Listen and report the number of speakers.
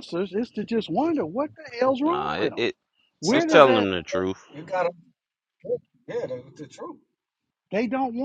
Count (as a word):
three